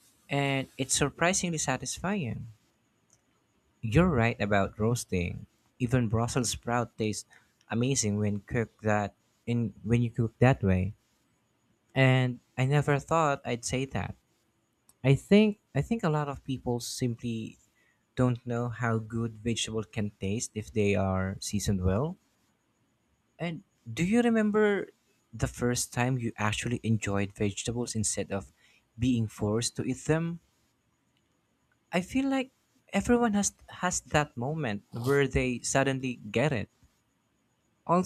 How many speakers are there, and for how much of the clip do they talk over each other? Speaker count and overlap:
1, no overlap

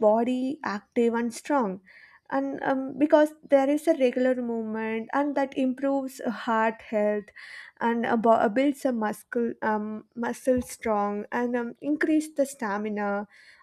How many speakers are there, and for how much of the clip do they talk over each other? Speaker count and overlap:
1, no overlap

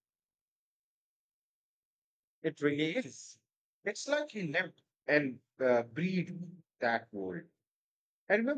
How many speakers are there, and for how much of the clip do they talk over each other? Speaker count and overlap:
1, no overlap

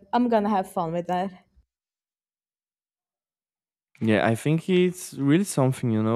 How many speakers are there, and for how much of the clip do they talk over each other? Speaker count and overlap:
2, no overlap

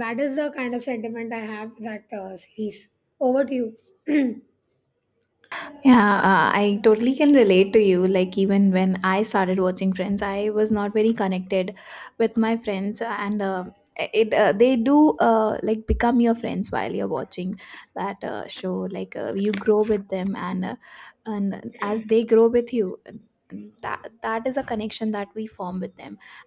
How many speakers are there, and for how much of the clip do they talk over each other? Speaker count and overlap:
2, no overlap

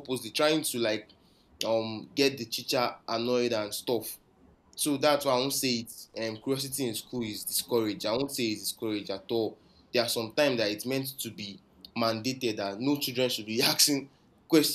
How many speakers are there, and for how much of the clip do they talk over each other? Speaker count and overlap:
1, no overlap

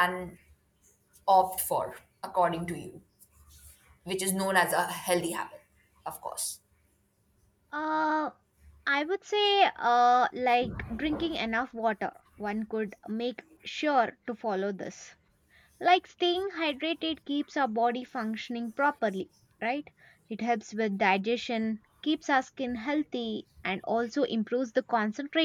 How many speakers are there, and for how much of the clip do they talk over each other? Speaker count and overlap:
2, no overlap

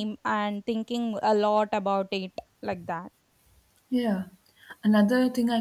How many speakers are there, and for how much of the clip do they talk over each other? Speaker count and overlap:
2, no overlap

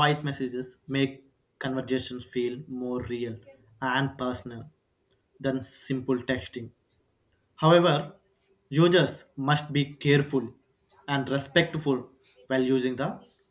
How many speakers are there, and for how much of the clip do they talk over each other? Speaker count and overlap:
1, no overlap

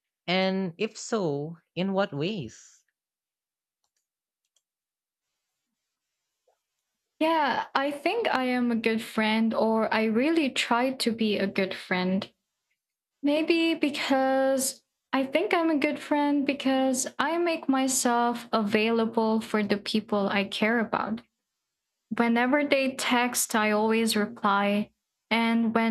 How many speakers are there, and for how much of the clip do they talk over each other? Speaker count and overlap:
2, no overlap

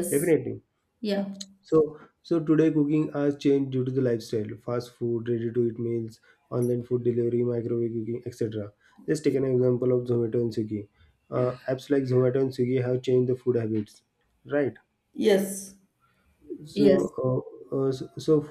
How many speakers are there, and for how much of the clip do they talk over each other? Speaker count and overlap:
2, about 1%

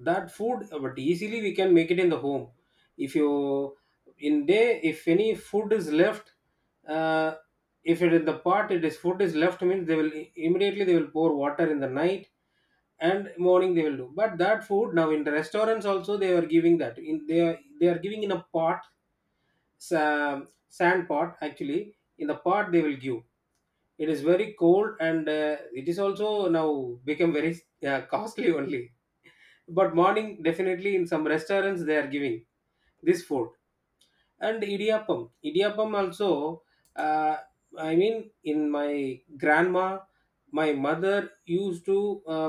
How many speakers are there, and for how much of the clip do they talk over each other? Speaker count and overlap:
1, no overlap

